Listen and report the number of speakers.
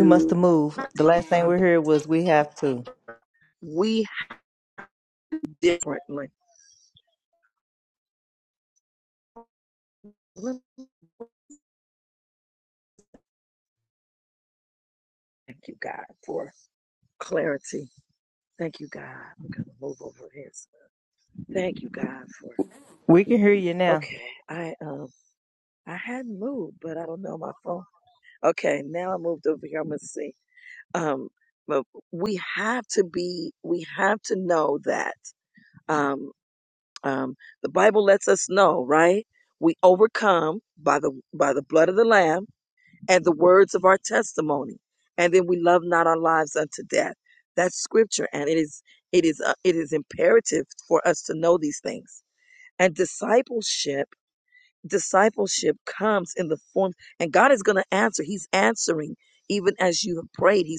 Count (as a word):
two